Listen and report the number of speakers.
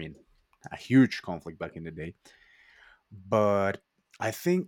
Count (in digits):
1